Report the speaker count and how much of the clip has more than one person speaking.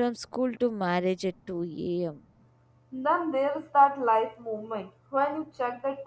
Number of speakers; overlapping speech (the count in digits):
2, no overlap